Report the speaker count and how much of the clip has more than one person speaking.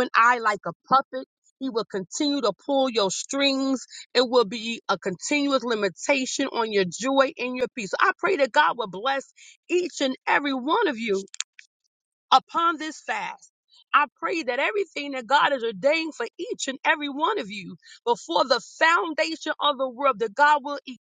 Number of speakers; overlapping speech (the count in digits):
1, no overlap